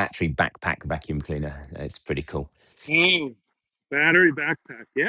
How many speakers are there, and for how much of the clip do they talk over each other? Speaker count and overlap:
2, no overlap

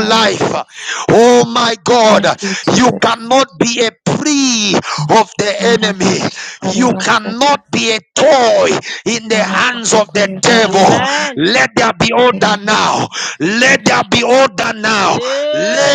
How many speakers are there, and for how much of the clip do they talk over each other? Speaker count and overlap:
3, about 40%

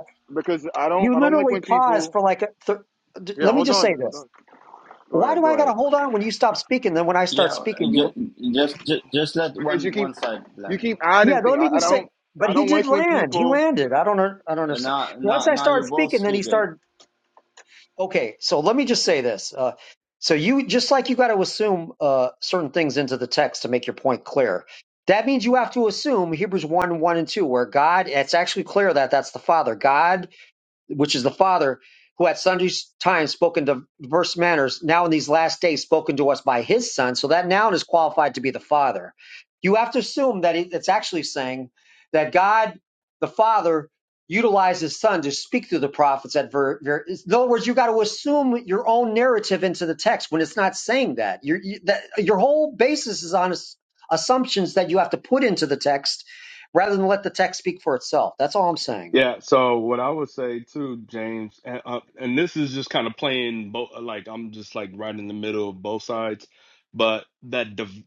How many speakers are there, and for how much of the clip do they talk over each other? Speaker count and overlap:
4, about 12%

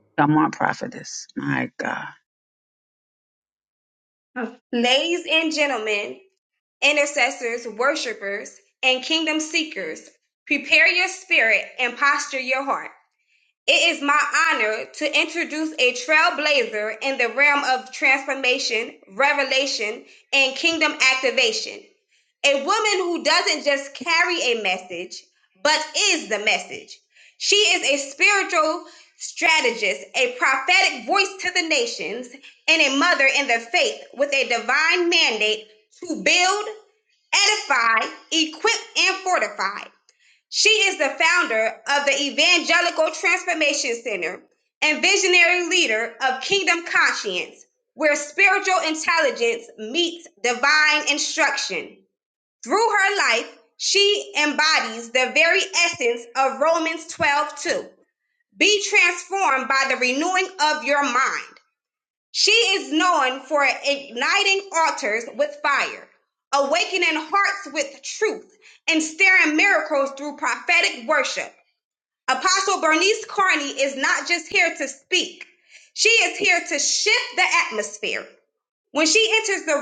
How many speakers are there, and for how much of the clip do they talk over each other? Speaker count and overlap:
2, no overlap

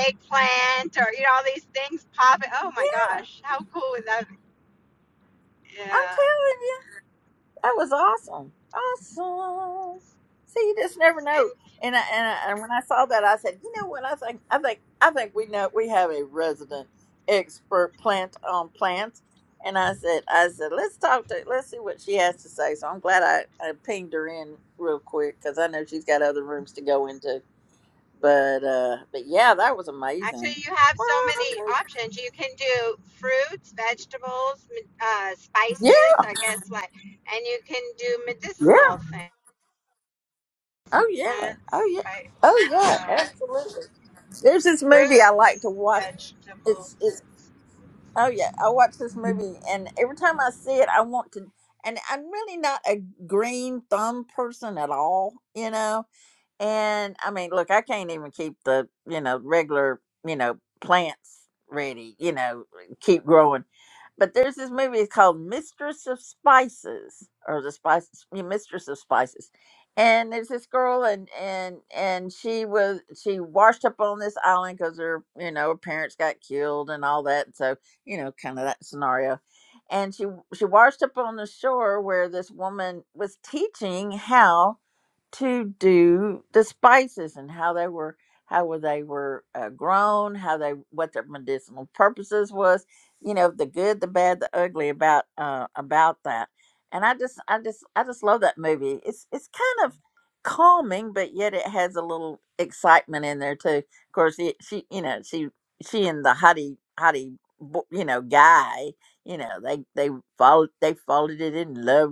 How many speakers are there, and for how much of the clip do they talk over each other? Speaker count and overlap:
2, about 2%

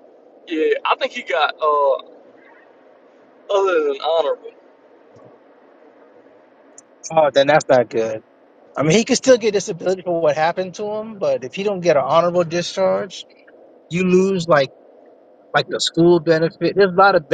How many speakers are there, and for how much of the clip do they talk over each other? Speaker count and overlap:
2, no overlap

